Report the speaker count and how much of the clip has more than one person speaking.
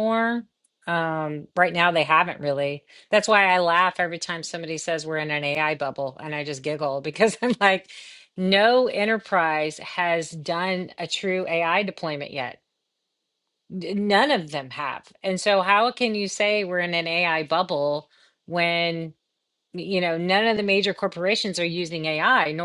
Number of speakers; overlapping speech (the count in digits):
1, no overlap